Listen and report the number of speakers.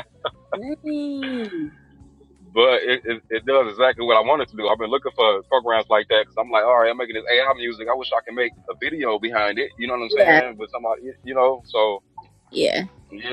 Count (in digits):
2